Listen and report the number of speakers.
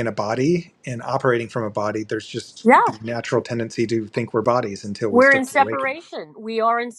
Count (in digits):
2